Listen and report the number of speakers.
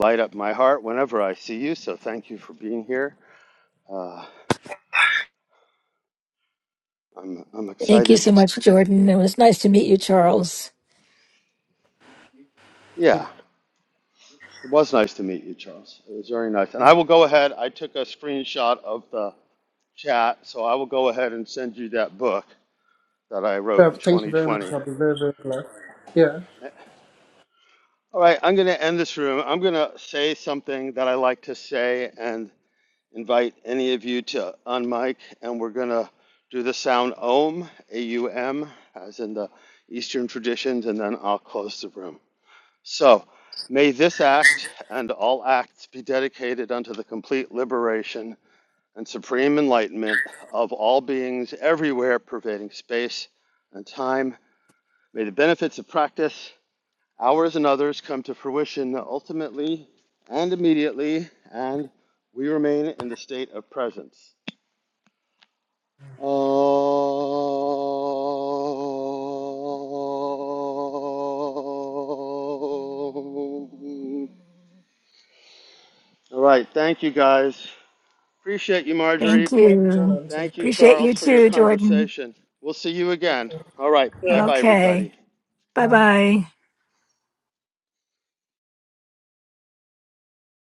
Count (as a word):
three